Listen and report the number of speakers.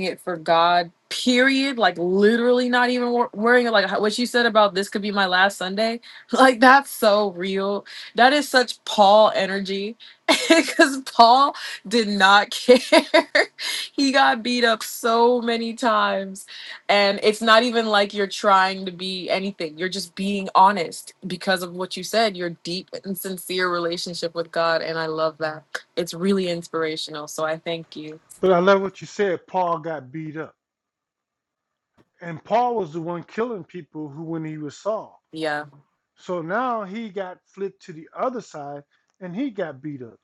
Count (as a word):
two